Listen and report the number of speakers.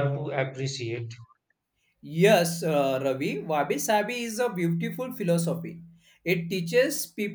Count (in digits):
2